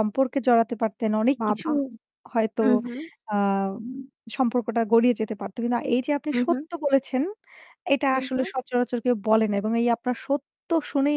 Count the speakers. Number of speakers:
two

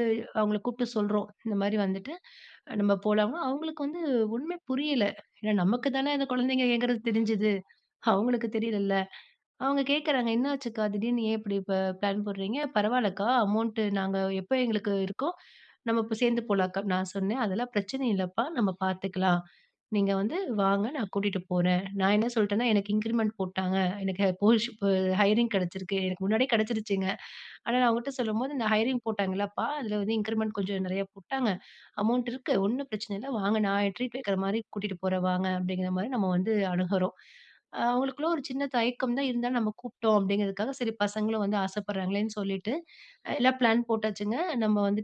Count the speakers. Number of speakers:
one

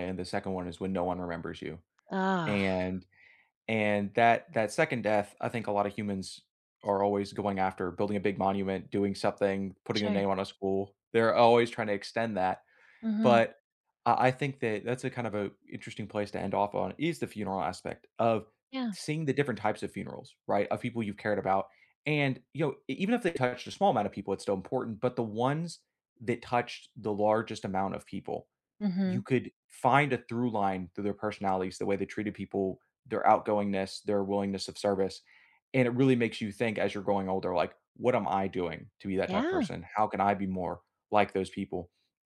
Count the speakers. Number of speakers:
two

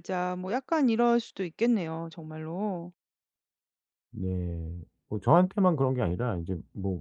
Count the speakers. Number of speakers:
two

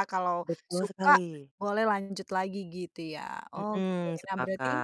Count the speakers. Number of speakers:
two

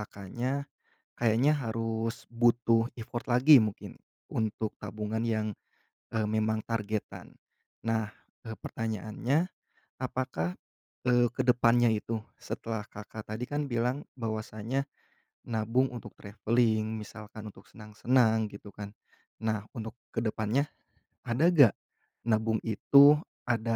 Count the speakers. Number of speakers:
one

